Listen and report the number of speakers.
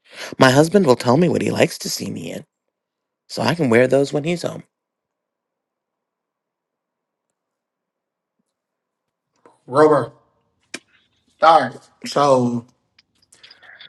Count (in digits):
2